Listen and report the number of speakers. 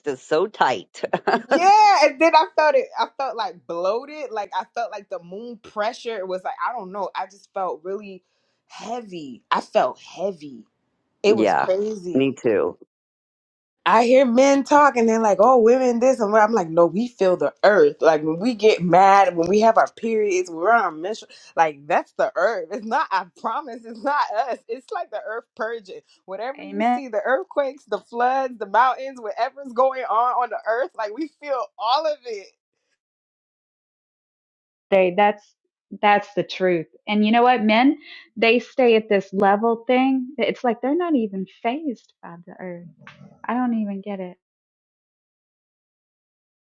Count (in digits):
3